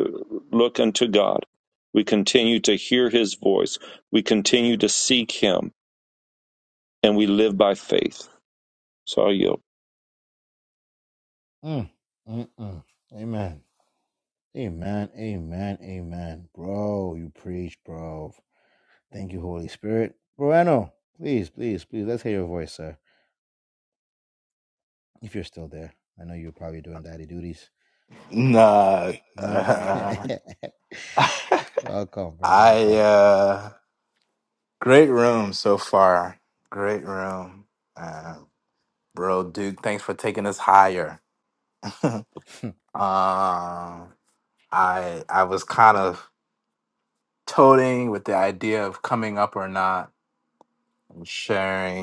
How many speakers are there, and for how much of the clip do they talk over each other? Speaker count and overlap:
3, about 2%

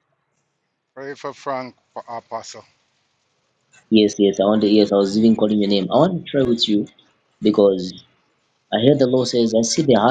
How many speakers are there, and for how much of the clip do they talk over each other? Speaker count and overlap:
2, no overlap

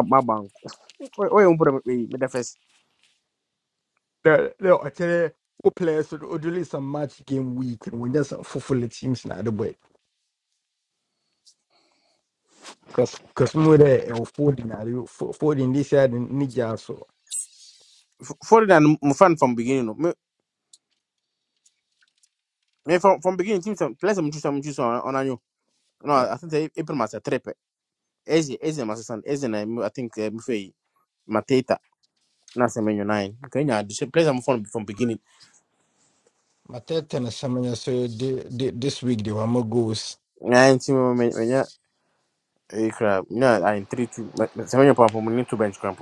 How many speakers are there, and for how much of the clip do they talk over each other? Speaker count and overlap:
2, under 1%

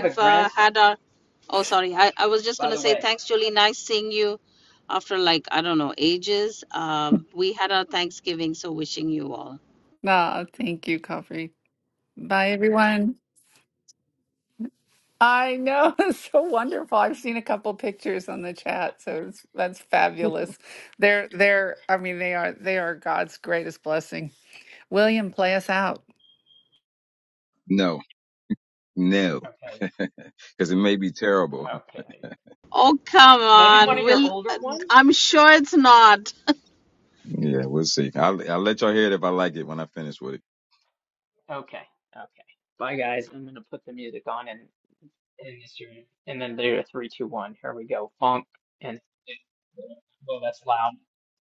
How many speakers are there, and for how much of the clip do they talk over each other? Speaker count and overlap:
4, about 5%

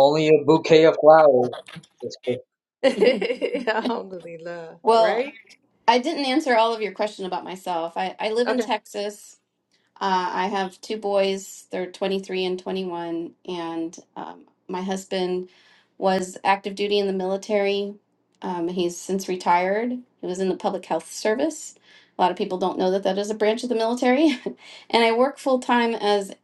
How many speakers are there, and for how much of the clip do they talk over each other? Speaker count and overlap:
3, about 2%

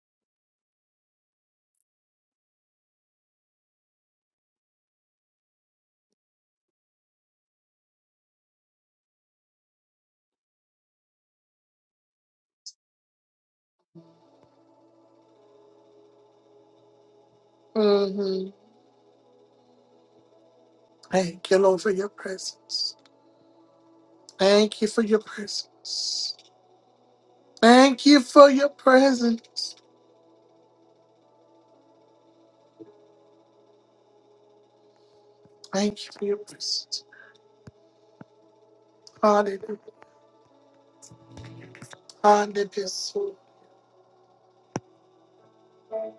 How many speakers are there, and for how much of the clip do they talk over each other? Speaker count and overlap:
1, no overlap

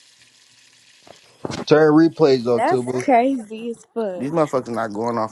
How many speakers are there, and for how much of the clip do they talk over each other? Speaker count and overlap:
3, about 11%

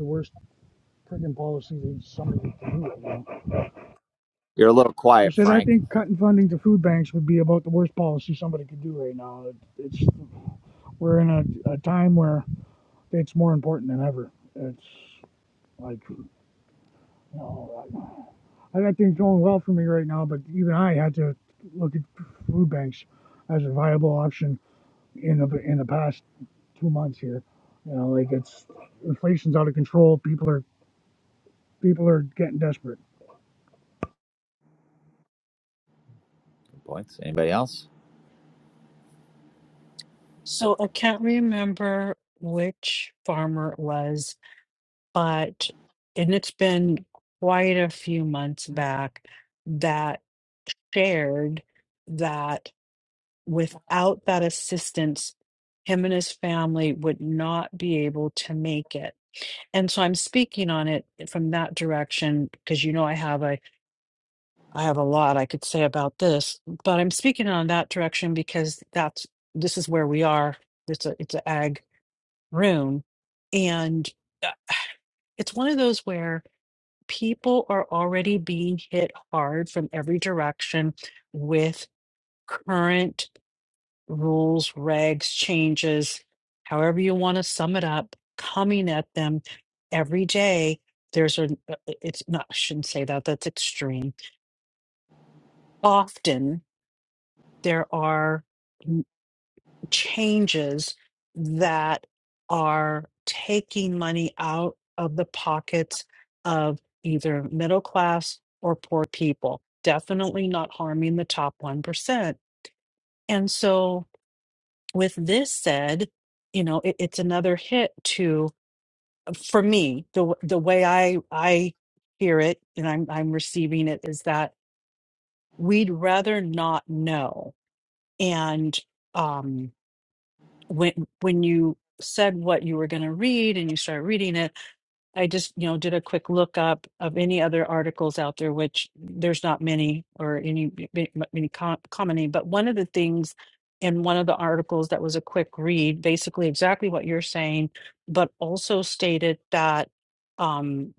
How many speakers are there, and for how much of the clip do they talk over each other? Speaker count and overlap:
3, under 1%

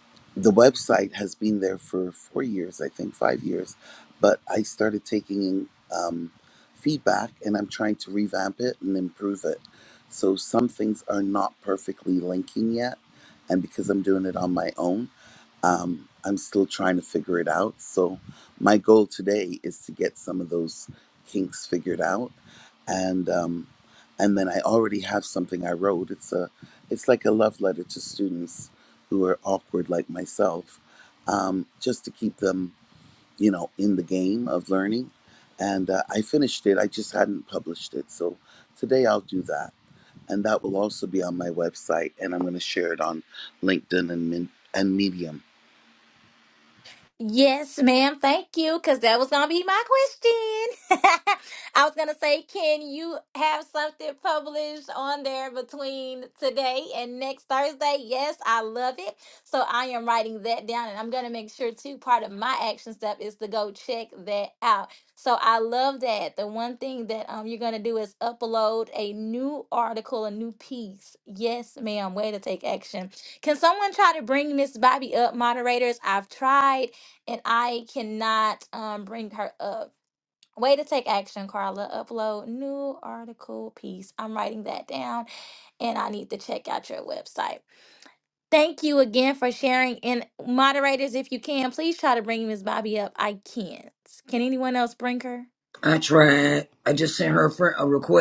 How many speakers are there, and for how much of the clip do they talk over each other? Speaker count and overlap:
3, no overlap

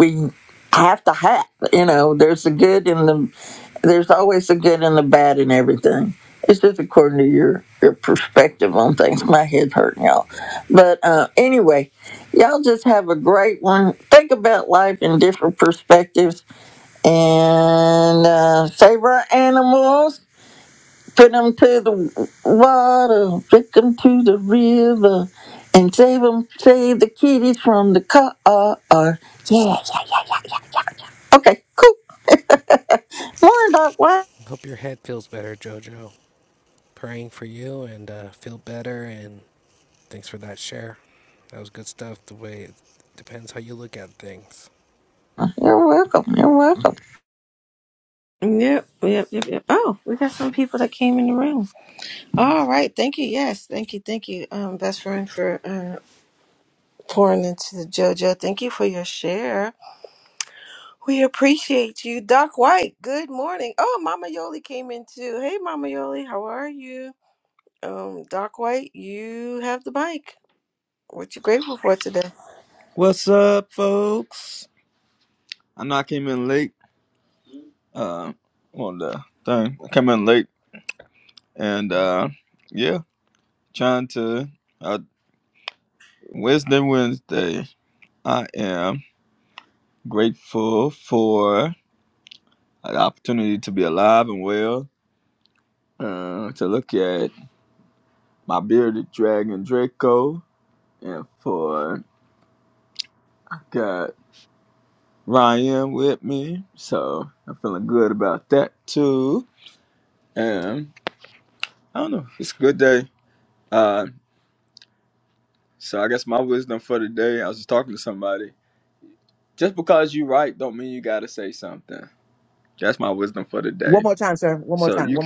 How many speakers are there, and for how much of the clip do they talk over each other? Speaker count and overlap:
5, about 1%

